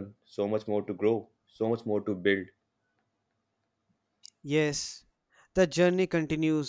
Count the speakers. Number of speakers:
two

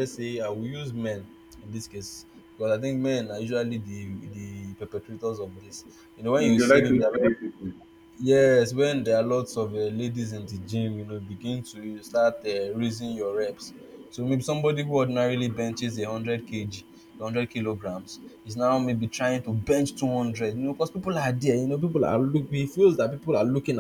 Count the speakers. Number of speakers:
two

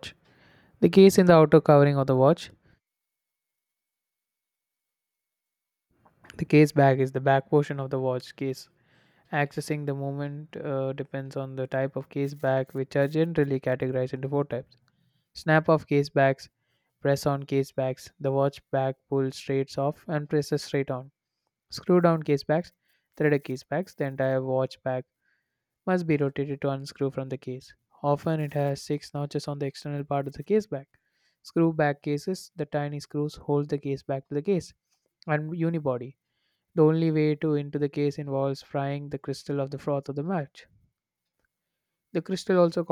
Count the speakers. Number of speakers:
one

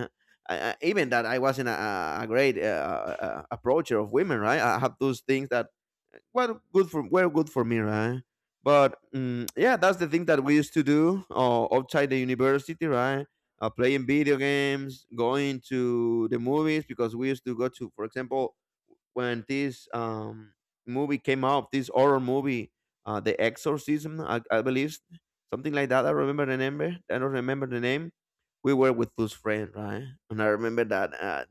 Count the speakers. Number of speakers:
one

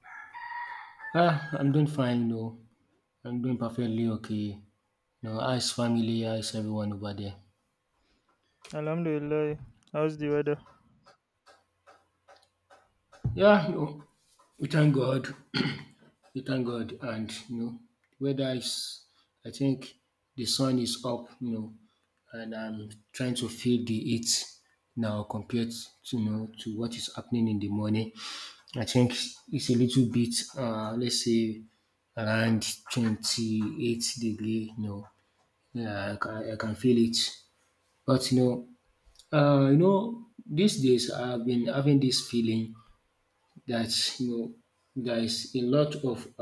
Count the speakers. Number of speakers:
two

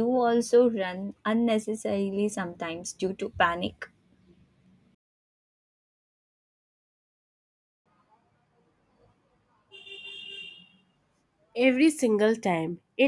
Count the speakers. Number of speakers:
two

